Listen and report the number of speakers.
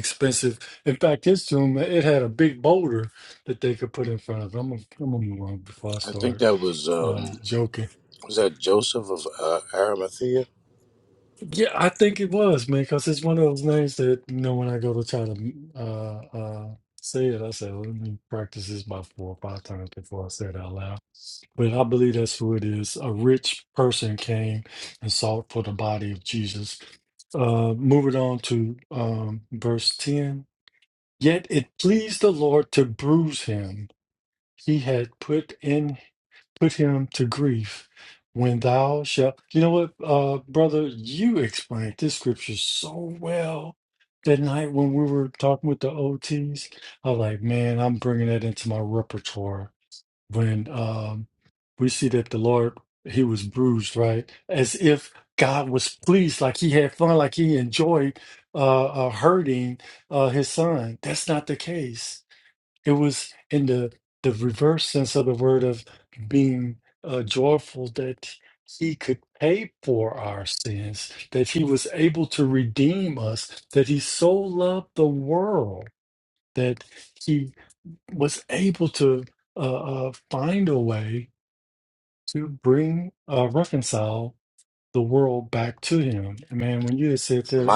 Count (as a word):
two